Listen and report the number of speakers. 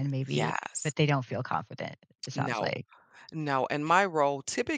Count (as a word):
two